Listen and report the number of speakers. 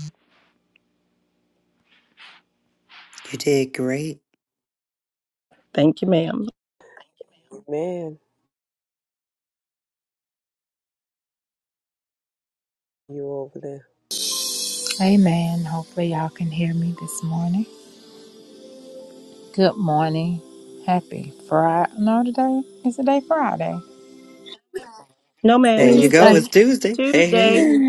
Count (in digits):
4